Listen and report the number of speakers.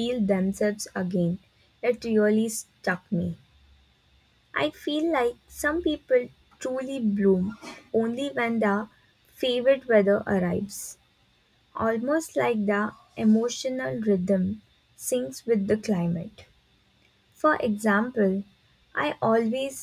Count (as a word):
one